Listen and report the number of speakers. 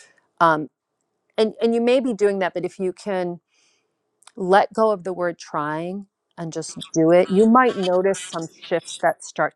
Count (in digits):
1